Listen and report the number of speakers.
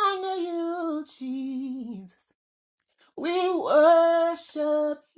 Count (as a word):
one